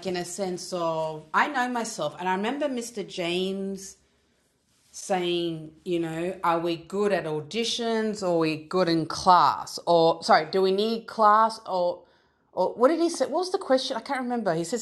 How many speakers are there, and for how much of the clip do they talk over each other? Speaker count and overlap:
1, no overlap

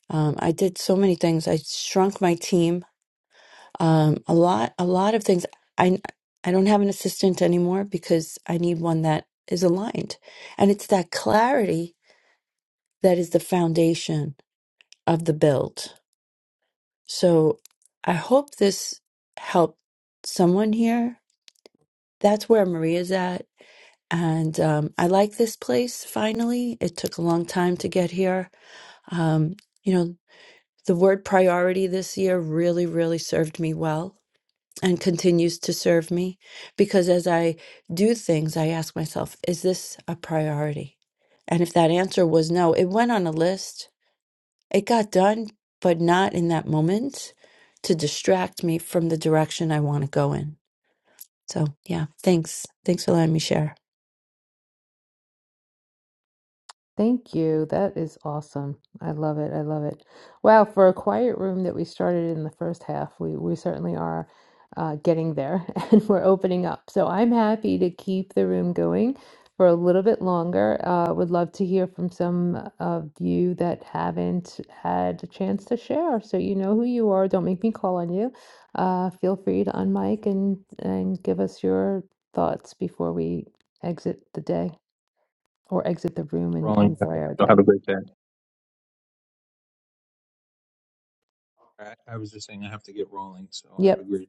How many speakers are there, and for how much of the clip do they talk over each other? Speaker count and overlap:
3, about 1%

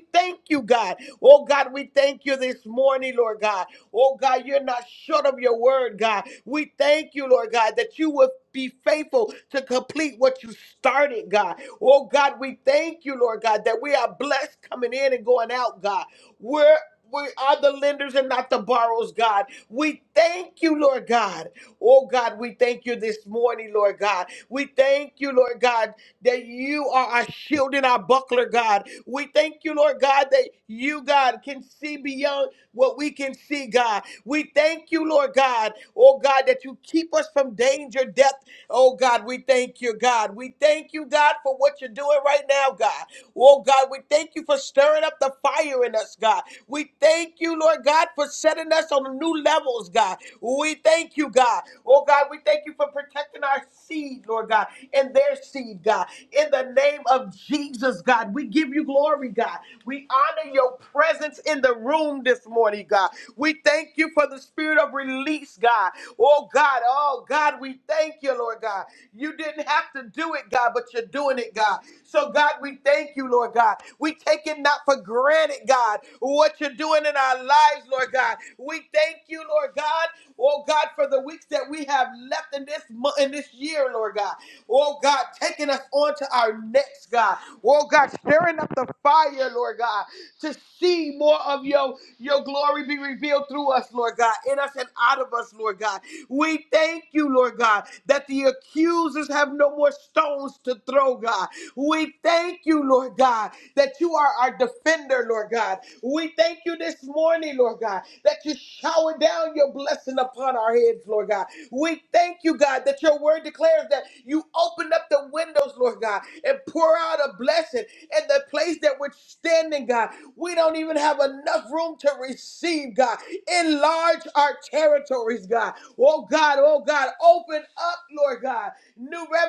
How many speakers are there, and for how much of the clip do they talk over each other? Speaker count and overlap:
1, no overlap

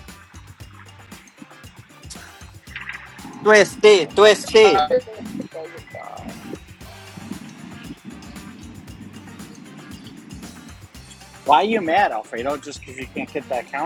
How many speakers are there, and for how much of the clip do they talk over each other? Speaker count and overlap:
3, about 6%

